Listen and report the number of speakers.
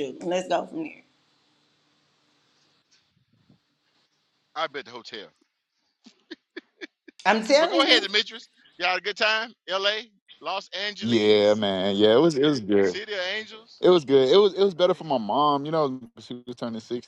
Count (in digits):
3